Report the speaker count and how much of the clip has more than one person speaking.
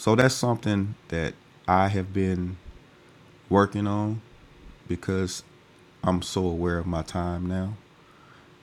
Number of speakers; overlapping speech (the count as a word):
one, no overlap